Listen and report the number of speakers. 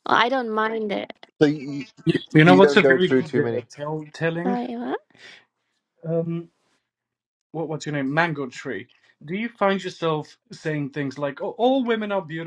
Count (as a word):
three